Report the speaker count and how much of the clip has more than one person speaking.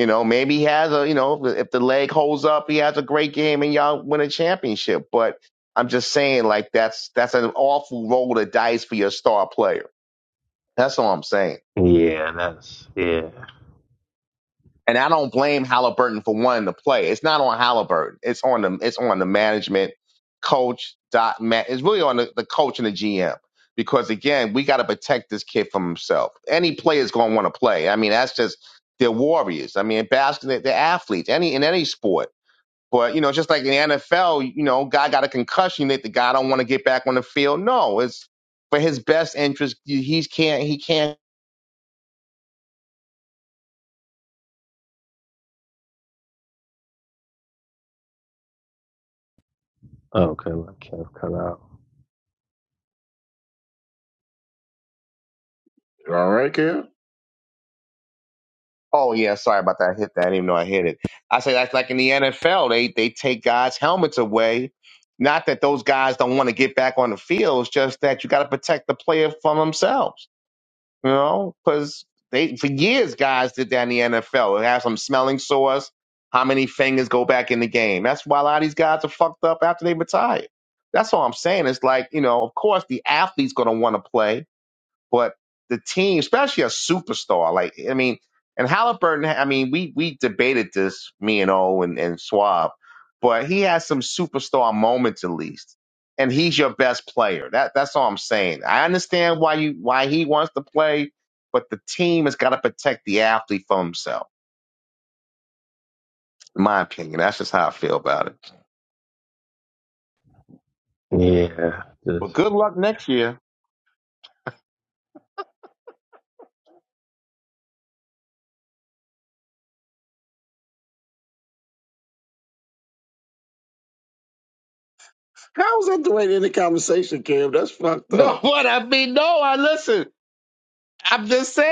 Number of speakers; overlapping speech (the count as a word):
three, under 1%